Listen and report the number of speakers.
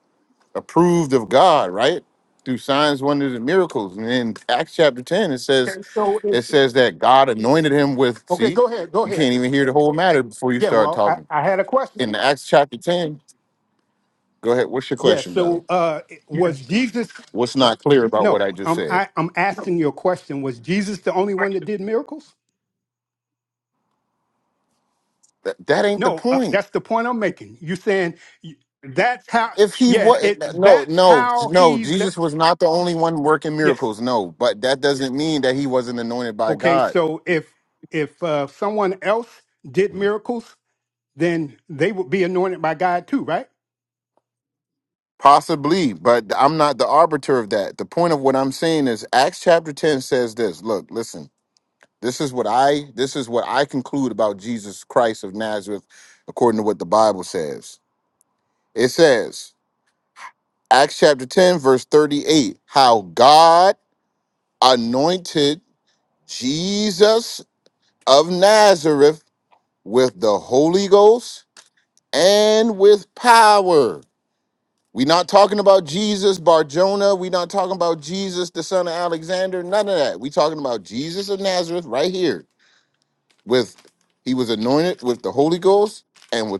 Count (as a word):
two